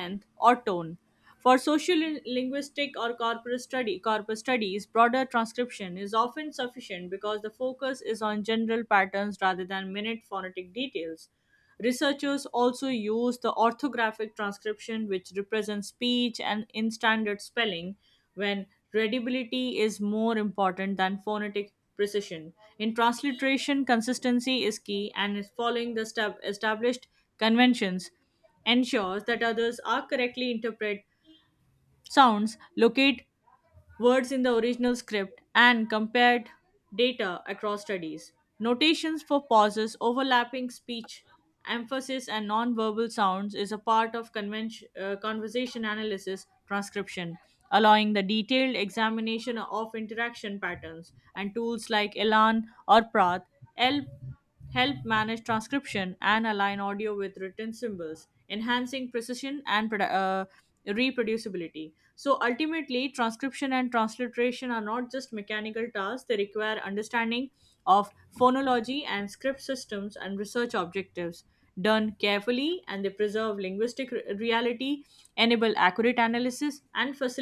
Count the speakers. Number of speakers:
one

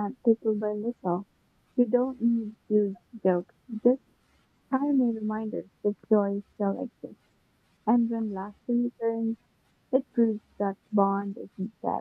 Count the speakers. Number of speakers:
one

